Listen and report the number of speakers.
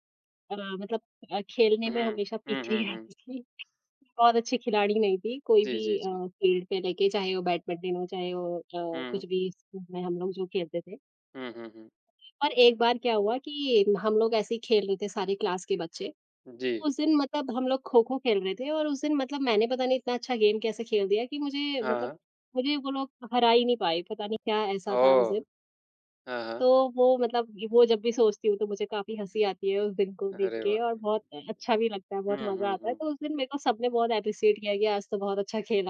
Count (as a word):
two